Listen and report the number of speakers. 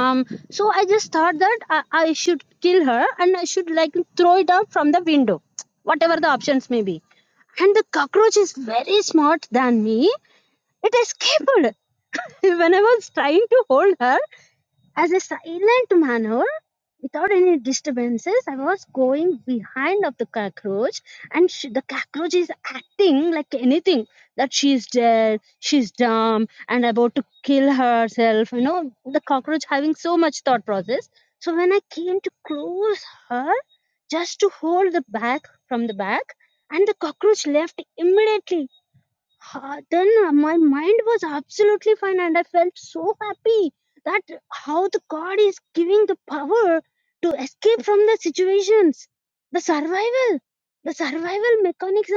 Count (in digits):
1